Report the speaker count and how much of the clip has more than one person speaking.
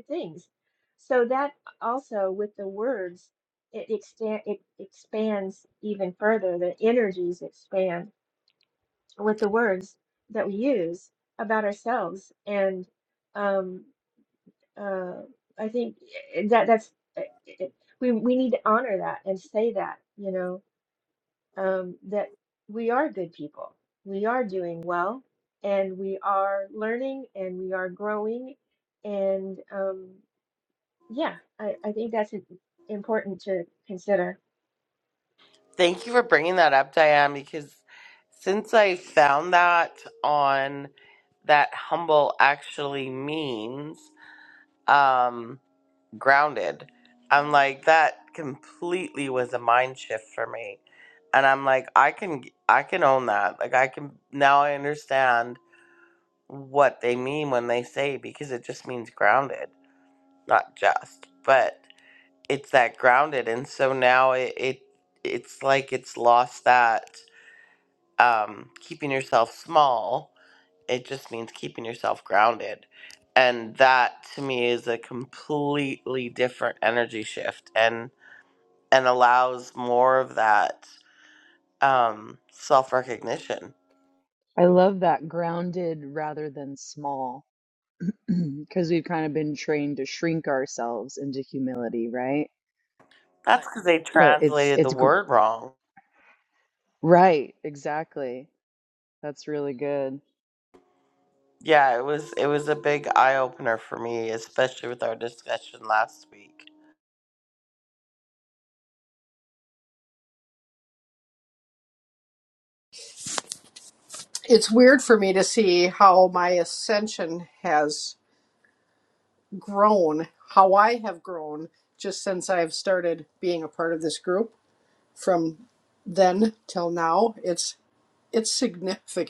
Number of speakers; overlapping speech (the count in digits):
4, about 1%